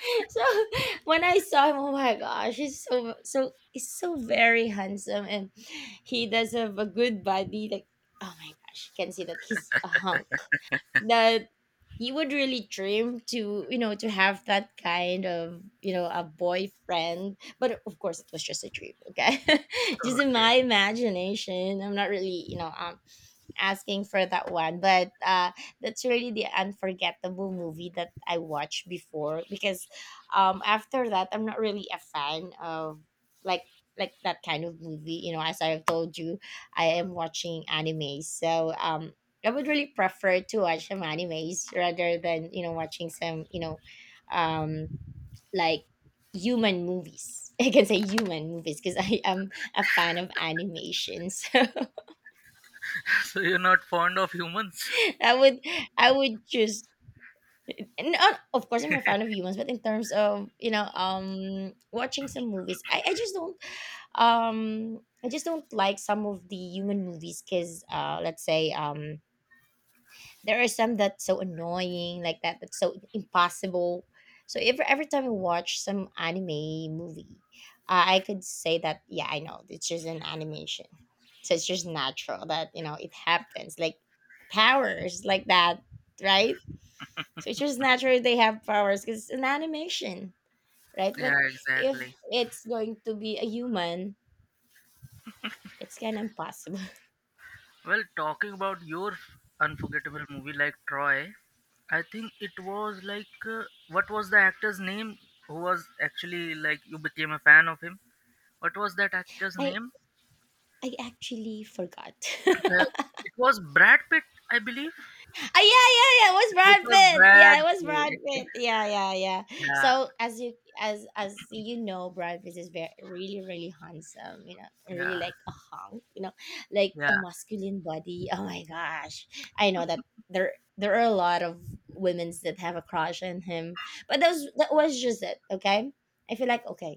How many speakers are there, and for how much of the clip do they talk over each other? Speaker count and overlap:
2, about 3%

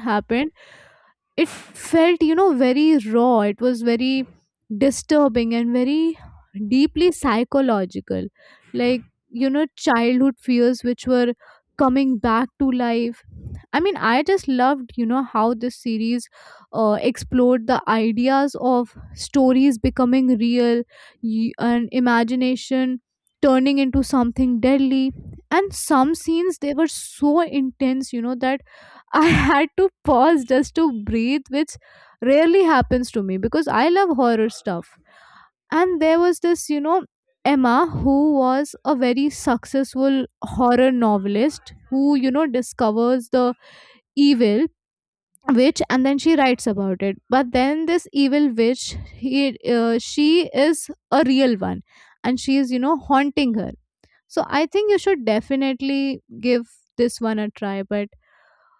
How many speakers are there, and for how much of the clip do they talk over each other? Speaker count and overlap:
1, no overlap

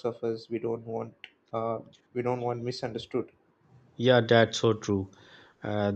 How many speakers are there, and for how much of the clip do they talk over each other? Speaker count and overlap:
2, no overlap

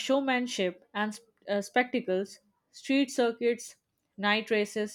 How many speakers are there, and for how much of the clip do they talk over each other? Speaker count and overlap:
1, no overlap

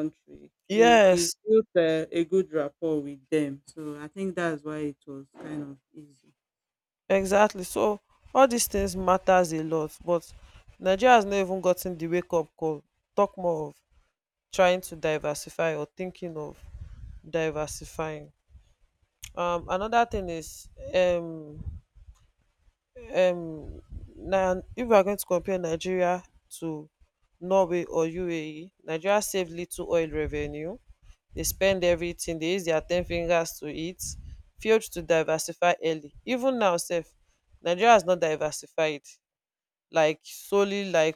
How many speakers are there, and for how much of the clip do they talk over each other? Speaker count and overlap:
2, about 1%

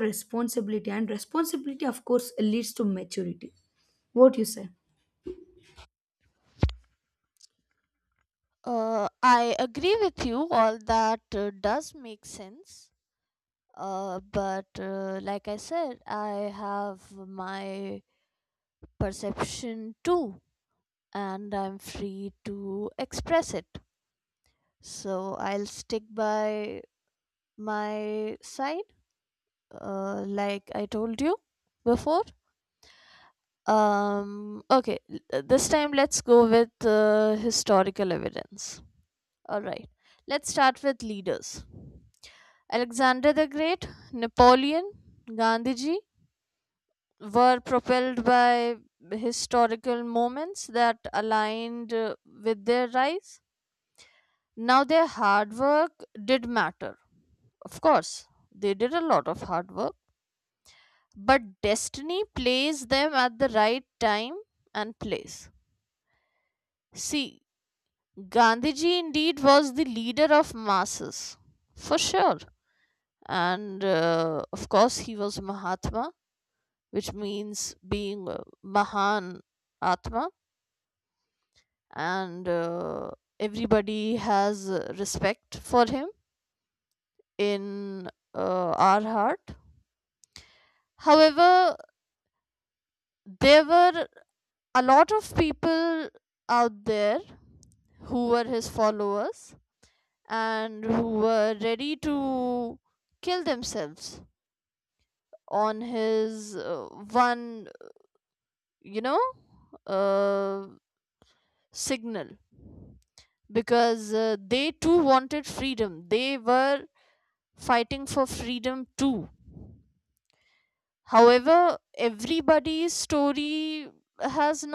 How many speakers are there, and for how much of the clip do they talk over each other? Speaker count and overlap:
2, no overlap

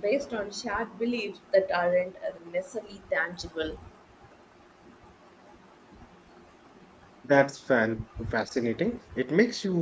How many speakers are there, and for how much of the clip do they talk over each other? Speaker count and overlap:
2, no overlap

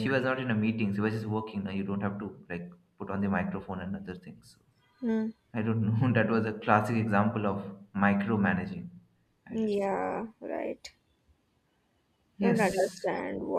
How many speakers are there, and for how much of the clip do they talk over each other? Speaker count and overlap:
2, about 4%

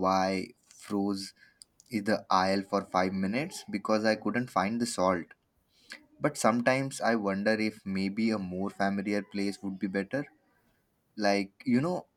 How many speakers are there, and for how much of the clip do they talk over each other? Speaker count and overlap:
1, no overlap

